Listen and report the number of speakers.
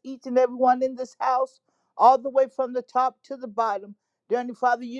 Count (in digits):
1